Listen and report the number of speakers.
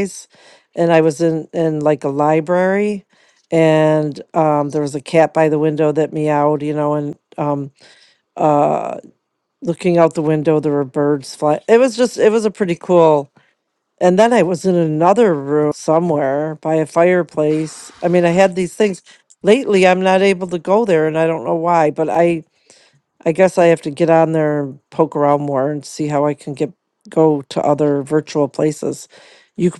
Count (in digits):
1